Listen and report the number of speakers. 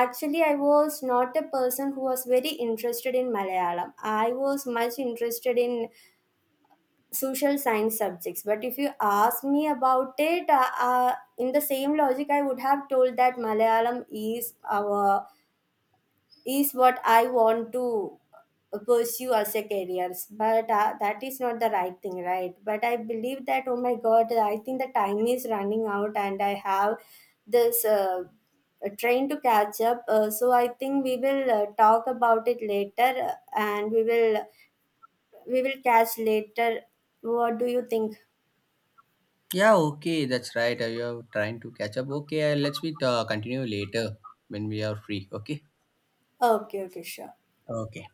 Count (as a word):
two